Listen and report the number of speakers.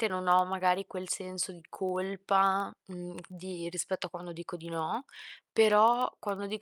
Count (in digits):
1